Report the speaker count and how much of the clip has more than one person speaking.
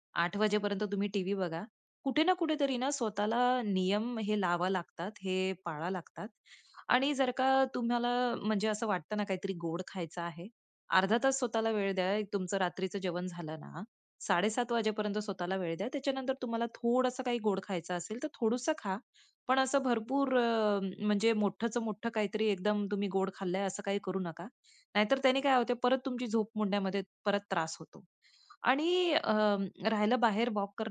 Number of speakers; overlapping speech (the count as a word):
one, no overlap